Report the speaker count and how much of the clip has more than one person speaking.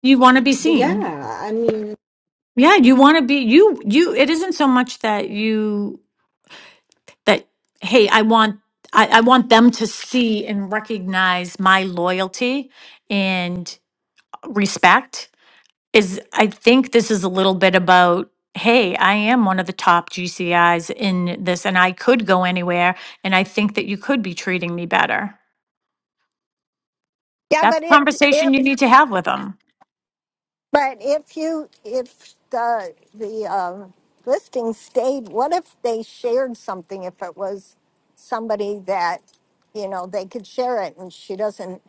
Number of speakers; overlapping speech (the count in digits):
3, about 3%